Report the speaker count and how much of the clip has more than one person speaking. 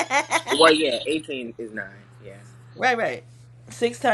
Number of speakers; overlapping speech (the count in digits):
2, about 3%